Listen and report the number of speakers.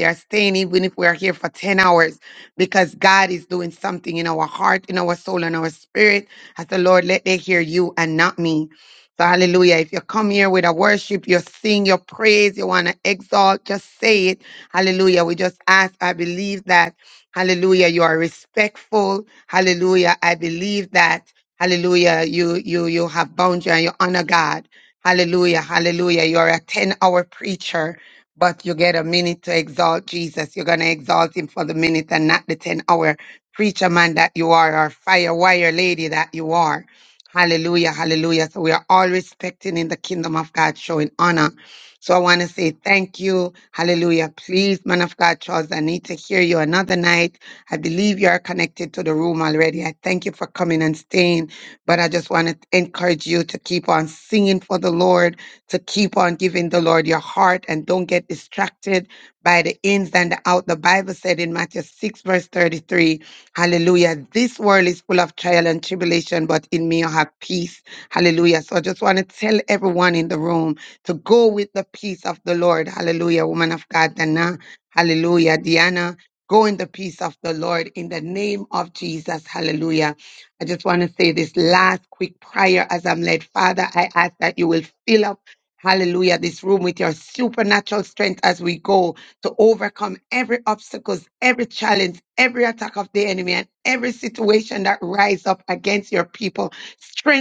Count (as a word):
one